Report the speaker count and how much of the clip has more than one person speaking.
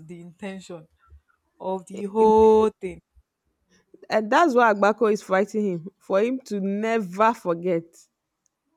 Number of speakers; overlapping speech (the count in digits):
2, about 8%